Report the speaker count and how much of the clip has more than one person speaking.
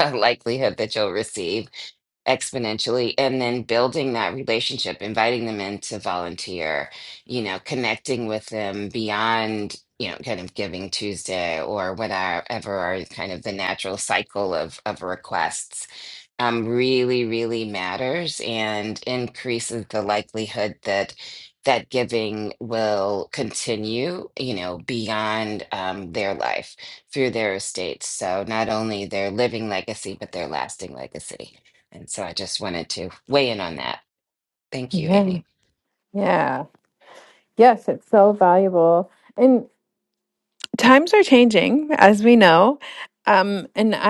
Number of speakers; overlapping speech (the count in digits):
2, about 1%